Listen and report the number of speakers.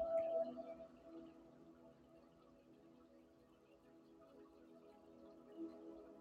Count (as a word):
zero